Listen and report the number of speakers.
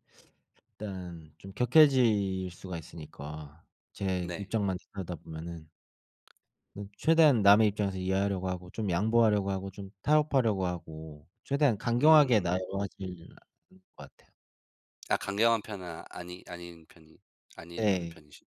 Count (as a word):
two